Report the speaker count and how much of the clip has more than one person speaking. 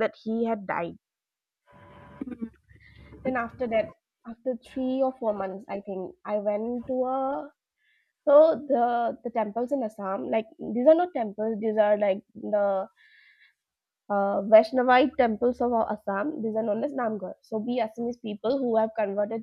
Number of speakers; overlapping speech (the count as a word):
one, no overlap